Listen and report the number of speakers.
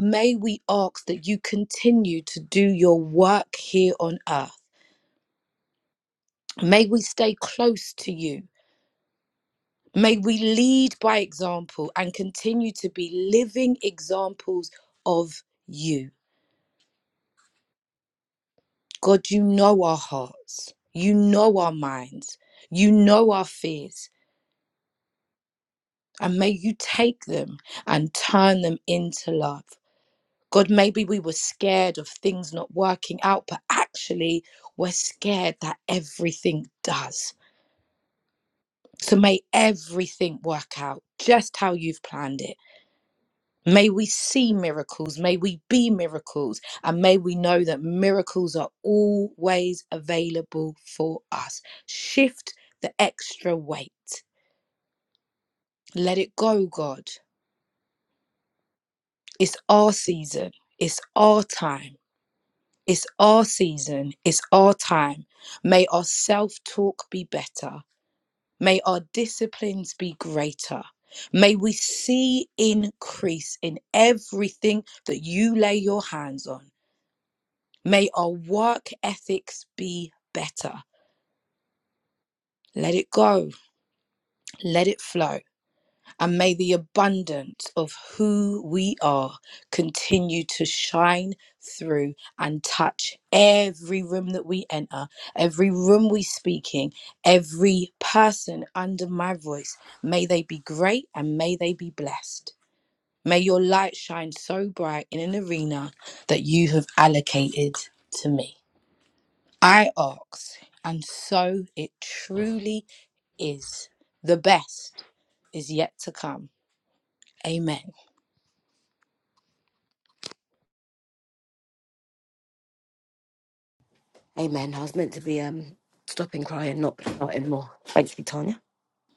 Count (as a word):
two